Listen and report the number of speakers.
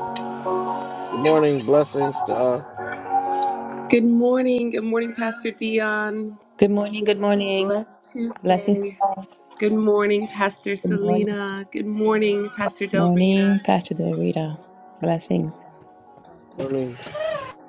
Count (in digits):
3